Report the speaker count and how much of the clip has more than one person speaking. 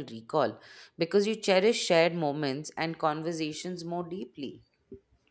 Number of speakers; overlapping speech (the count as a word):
one, no overlap